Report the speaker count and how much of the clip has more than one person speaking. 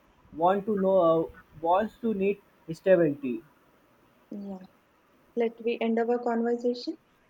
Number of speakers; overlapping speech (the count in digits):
2, no overlap